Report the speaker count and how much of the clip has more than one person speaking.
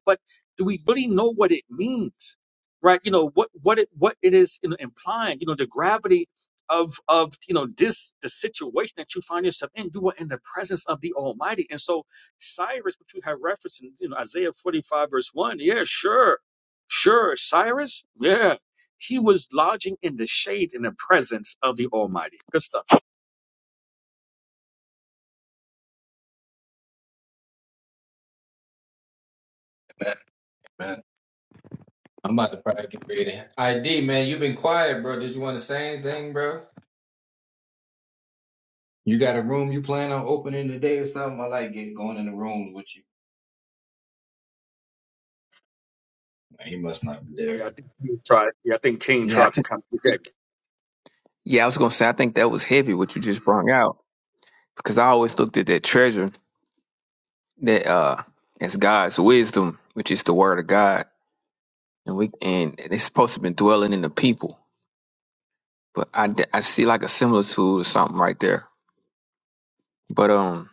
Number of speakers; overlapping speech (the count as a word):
three, about 1%